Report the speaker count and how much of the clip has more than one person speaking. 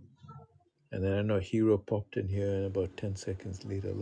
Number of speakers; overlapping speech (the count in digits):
1, no overlap